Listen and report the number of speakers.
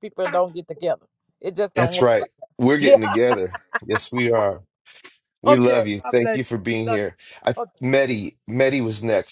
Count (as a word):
two